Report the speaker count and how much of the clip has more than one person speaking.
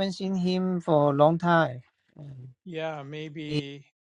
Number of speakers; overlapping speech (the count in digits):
2, about 3%